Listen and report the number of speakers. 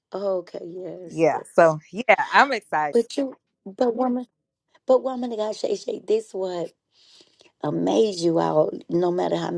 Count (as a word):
two